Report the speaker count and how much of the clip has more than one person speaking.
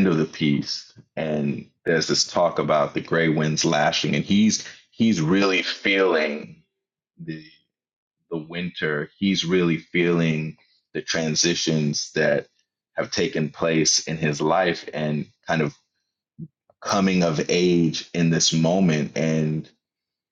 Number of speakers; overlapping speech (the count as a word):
one, no overlap